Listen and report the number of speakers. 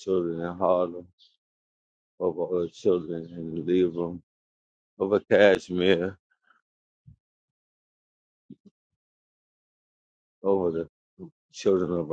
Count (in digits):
1